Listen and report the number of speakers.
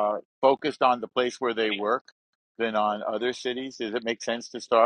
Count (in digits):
1